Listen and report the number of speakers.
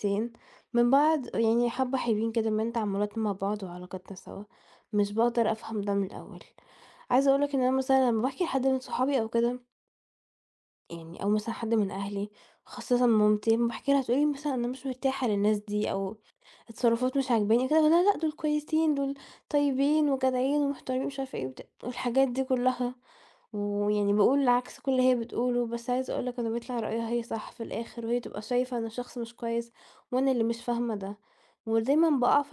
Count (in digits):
1